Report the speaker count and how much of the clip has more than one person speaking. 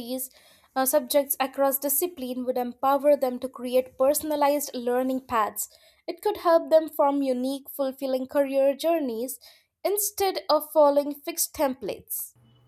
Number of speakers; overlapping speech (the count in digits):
1, no overlap